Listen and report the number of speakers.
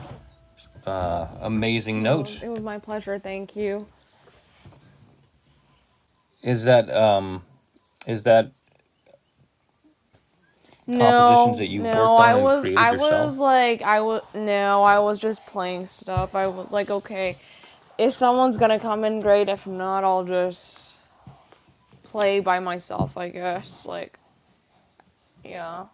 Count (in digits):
2